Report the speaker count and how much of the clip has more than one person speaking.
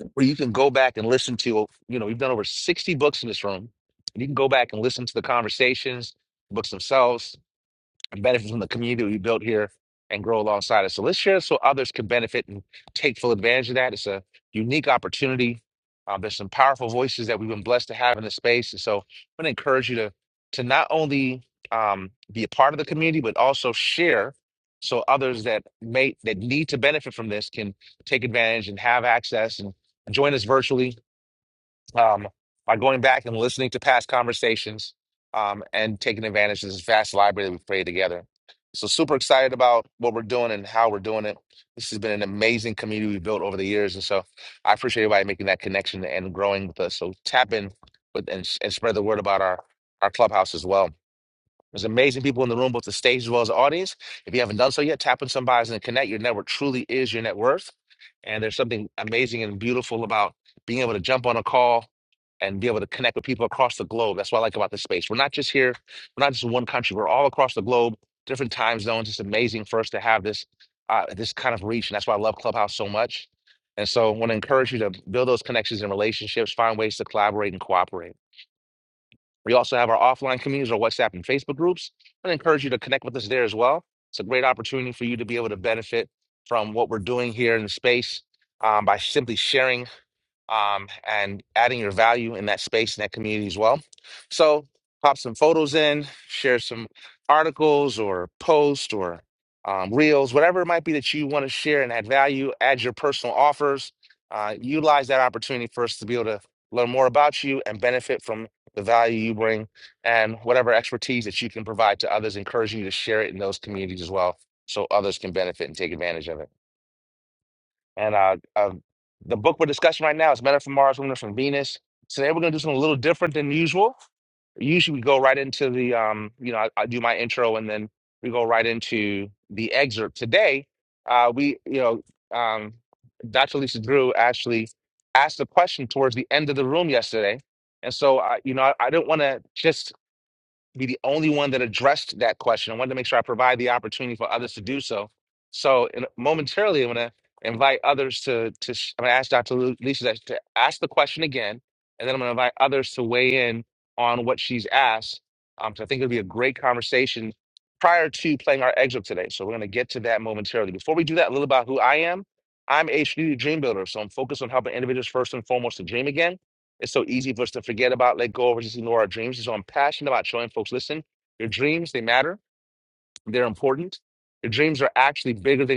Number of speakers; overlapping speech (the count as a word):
one, no overlap